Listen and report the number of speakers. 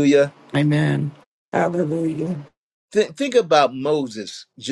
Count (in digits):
2